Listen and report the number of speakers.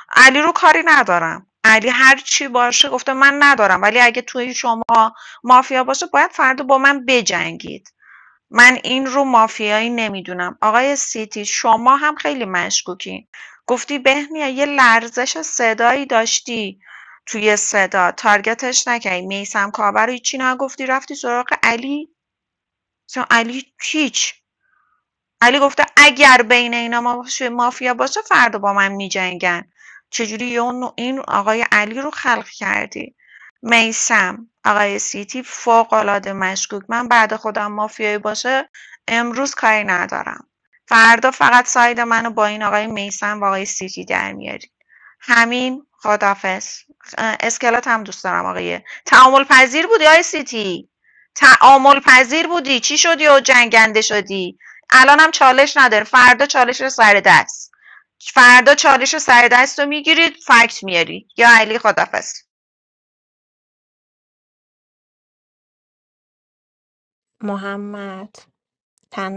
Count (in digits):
2